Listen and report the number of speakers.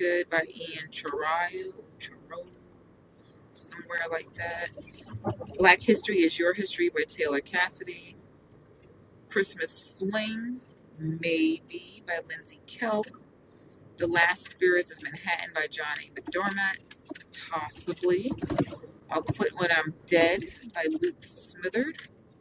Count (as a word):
one